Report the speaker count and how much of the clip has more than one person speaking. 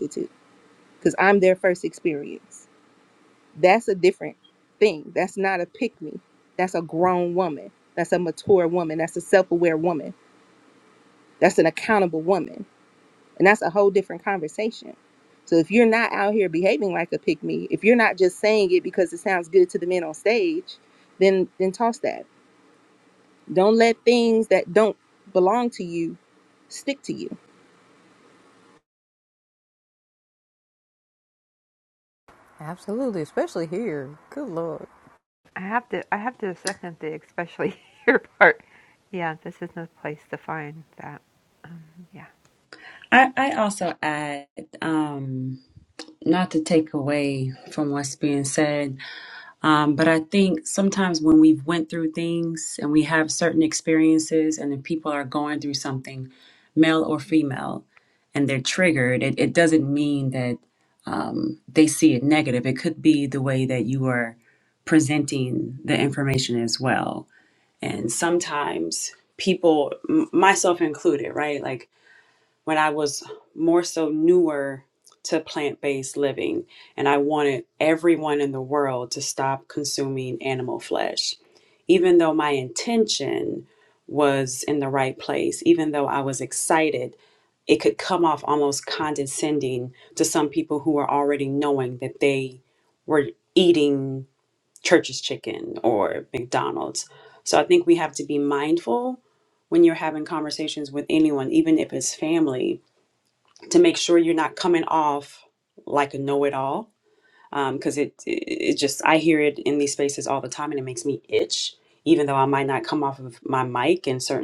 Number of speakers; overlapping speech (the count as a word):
four, no overlap